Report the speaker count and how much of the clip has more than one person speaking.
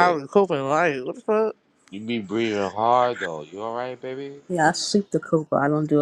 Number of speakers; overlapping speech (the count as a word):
three, about 3%